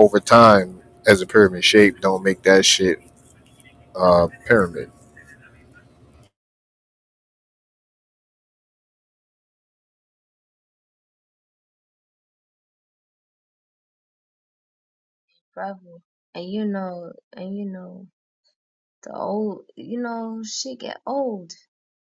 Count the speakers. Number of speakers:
two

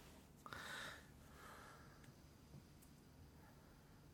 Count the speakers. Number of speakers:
zero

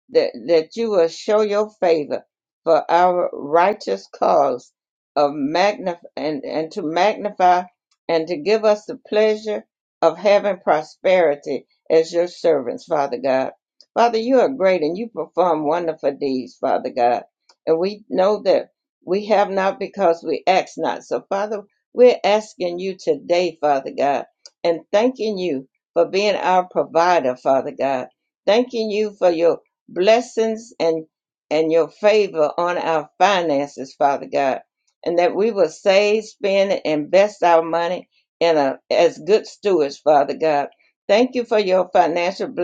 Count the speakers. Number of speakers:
one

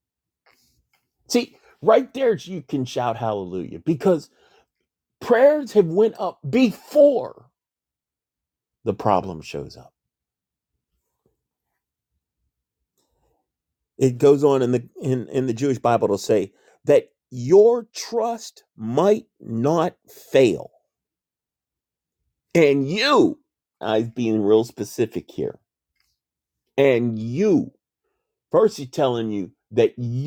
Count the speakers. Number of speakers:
one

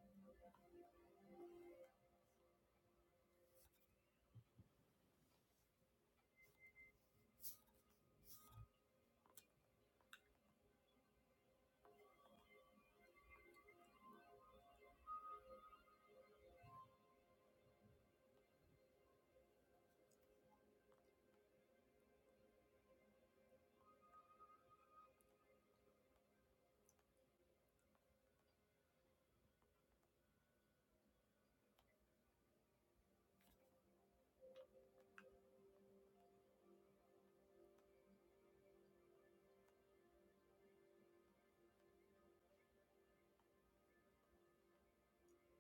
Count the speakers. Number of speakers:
zero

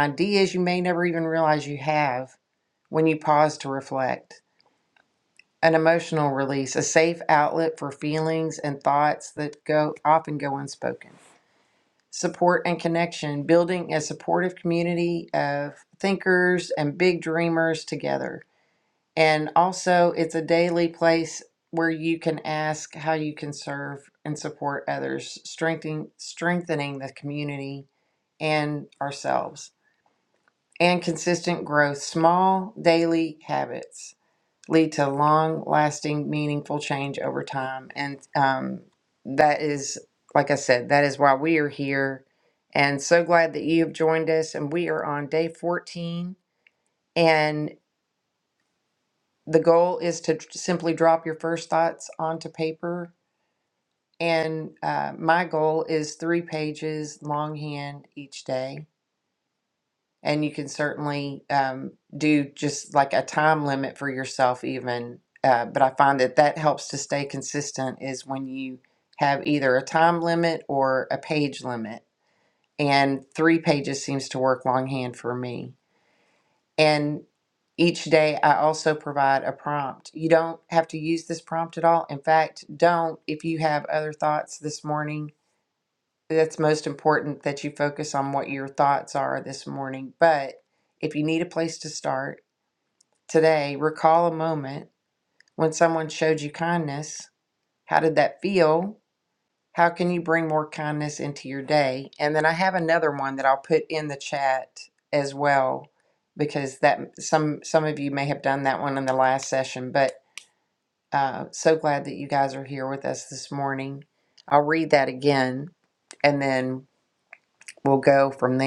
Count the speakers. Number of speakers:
one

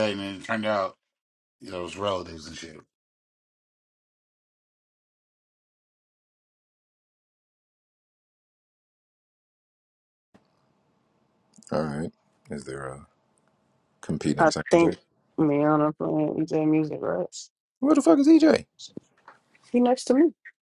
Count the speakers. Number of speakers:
three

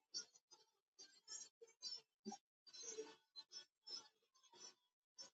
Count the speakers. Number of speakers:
zero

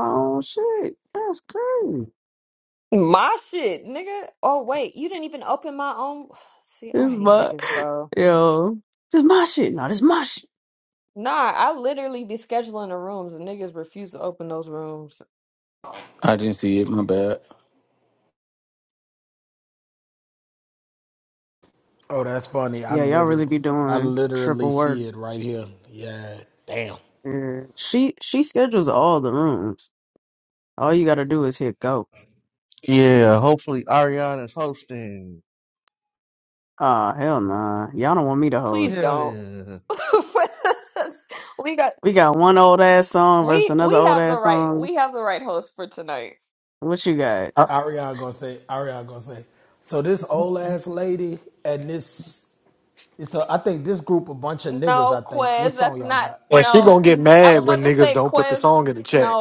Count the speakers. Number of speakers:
six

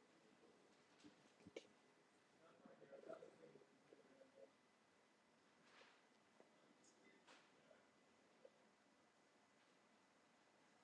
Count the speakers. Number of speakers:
zero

